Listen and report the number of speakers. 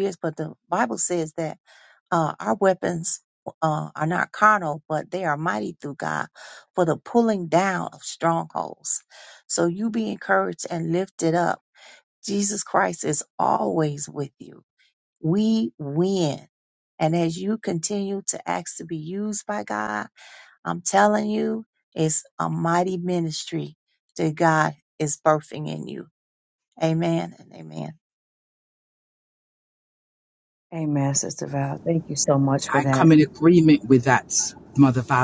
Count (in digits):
3